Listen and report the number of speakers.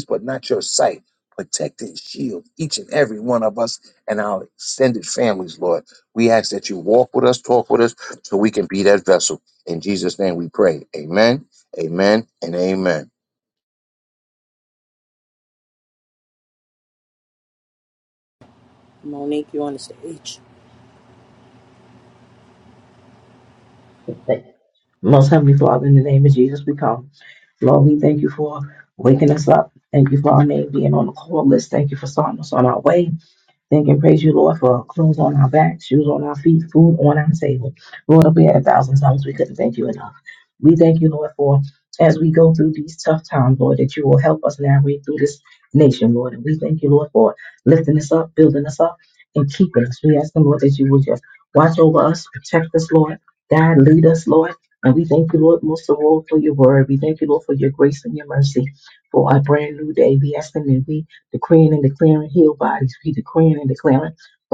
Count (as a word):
three